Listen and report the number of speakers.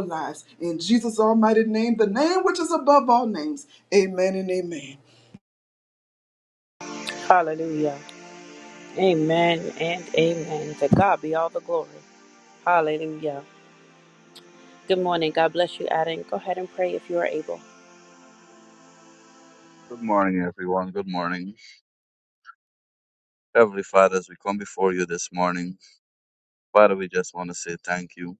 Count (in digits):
3